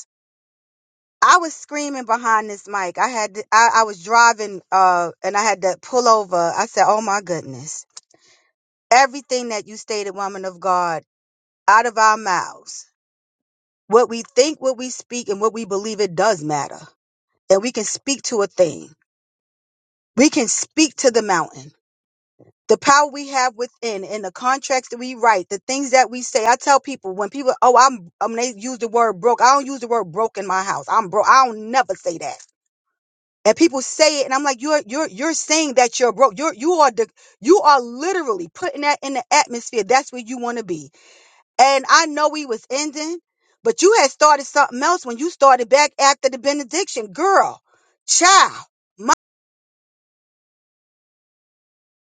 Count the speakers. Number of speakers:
one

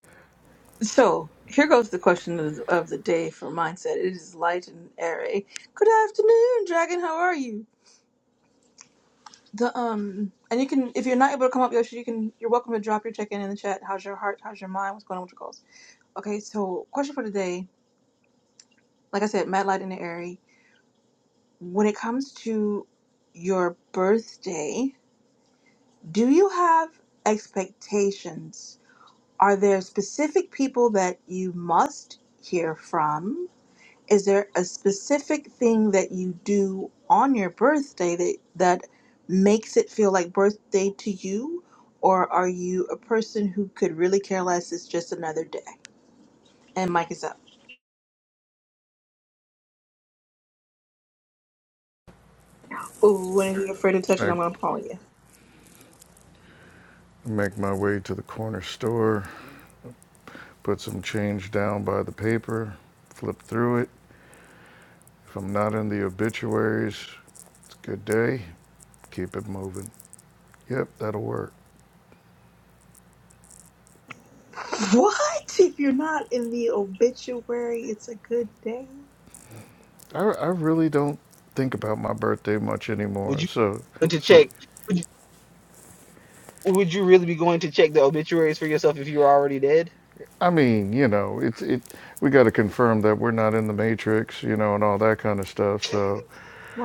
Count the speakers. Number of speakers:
three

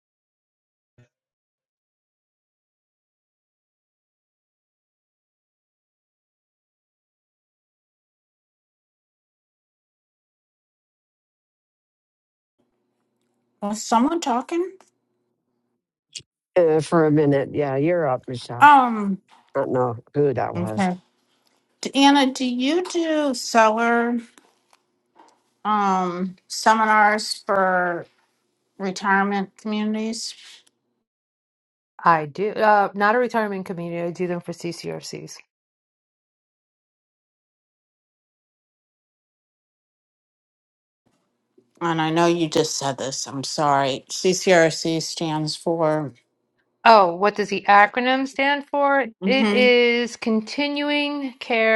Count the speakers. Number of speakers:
three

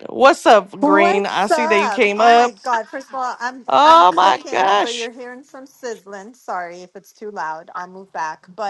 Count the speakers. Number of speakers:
two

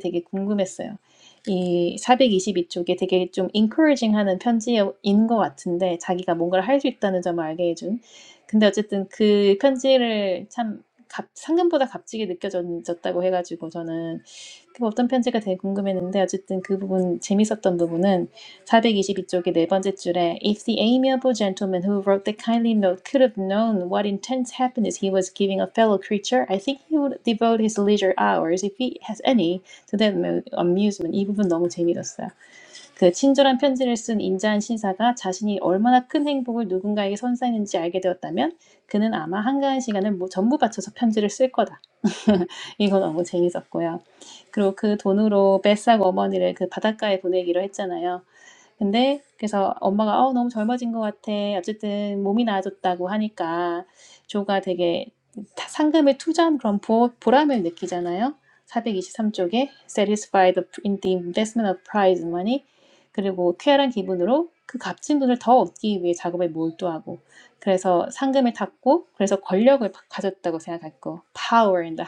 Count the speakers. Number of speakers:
one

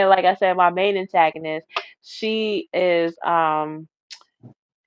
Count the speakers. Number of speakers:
one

